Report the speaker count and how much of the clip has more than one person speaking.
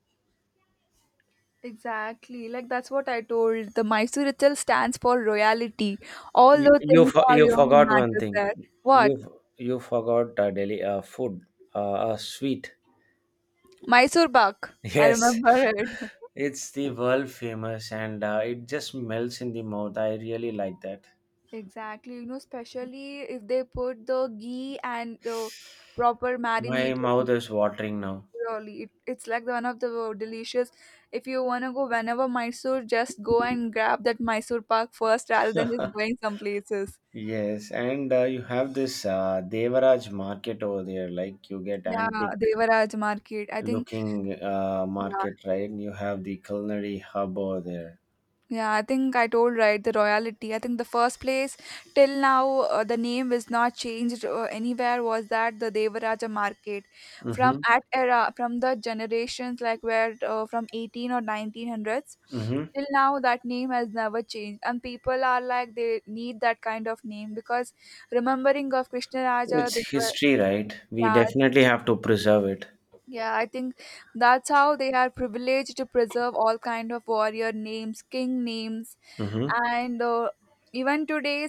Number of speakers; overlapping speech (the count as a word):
two, about 7%